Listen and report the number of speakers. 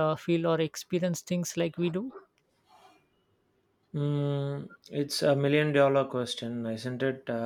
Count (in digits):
2